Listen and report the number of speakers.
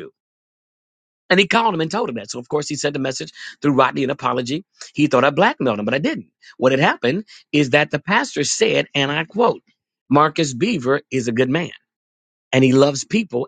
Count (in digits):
1